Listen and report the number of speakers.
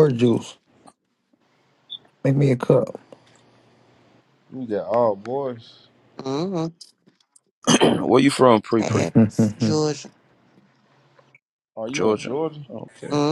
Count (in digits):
4